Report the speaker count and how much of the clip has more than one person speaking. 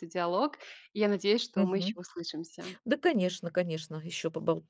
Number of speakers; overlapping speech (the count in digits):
2, about 8%